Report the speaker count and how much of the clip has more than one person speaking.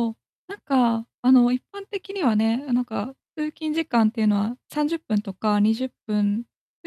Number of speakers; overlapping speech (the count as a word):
one, no overlap